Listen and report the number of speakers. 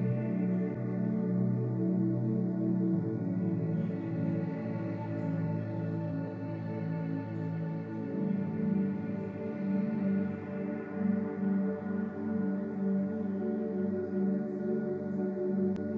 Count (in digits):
0